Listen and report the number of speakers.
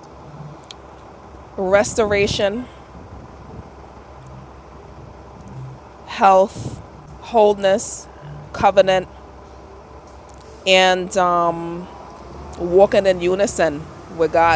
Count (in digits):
1